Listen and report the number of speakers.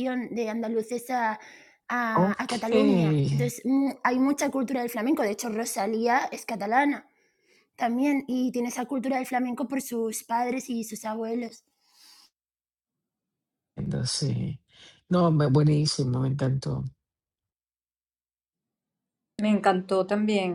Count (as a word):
three